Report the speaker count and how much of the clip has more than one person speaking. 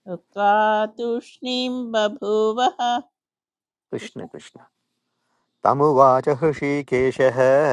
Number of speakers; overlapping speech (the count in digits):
2, about 3%